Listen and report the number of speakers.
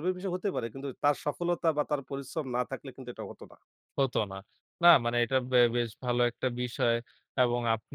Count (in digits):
2